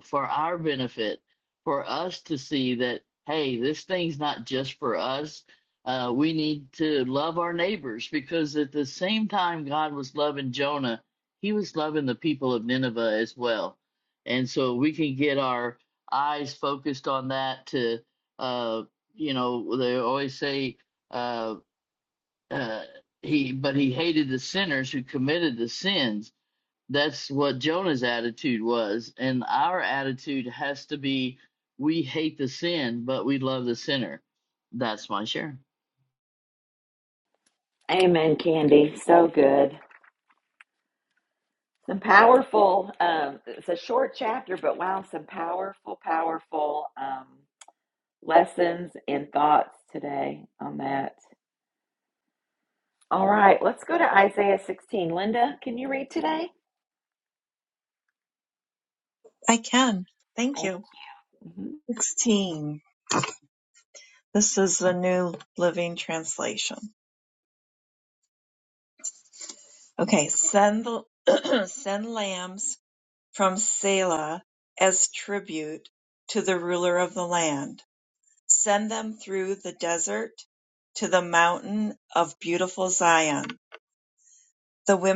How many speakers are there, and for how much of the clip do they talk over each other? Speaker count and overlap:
three, under 1%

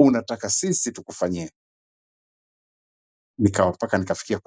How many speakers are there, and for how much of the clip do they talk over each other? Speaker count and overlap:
one, no overlap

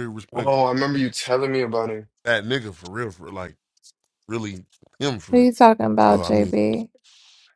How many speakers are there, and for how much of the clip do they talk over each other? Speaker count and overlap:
three, about 10%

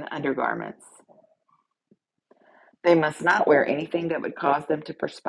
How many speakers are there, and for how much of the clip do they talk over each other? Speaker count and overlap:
one, no overlap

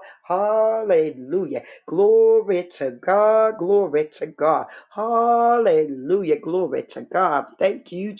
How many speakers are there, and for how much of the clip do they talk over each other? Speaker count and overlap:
one, no overlap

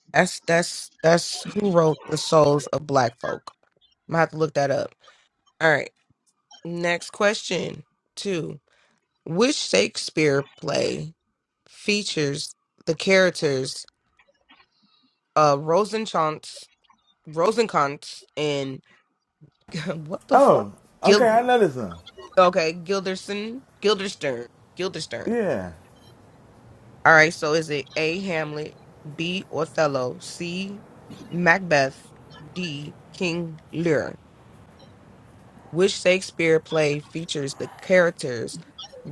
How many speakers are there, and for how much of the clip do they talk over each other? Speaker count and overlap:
two, about 2%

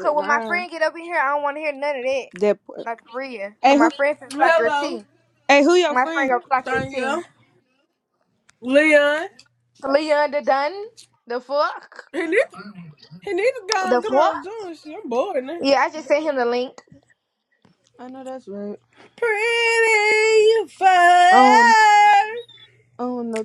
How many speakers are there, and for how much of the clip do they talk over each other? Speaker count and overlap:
three, about 16%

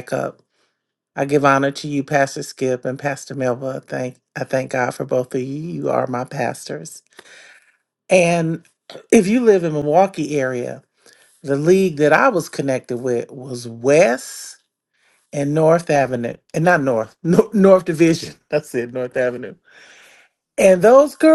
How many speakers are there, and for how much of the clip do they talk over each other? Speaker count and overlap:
one, no overlap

